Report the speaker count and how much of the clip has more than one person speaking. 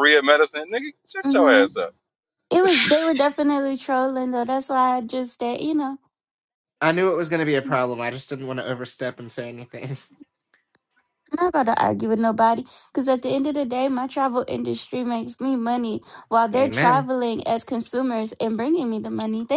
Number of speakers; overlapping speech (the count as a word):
three, about 5%